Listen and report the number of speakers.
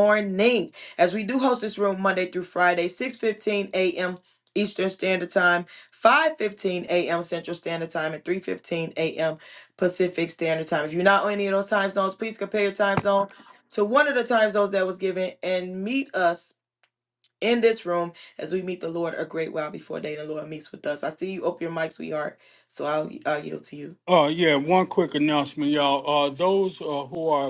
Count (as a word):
two